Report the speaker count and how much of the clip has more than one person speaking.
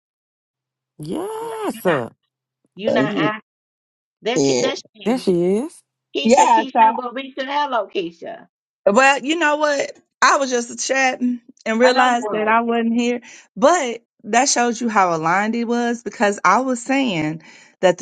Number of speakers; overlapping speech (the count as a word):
three, about 14%